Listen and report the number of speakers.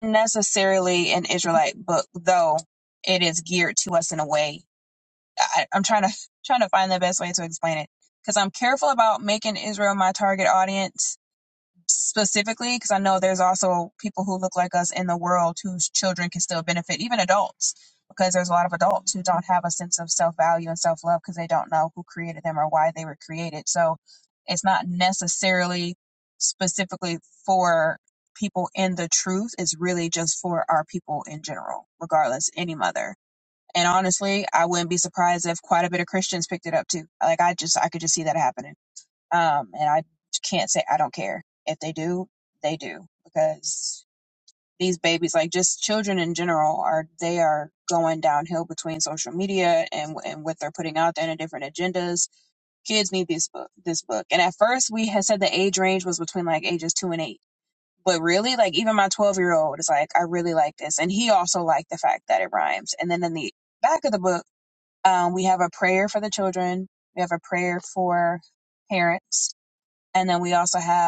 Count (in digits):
1